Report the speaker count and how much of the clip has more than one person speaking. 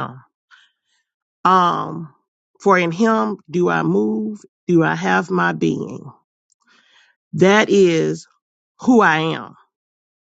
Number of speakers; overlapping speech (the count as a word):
one, no overlap